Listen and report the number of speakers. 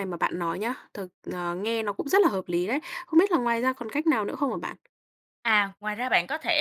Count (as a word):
two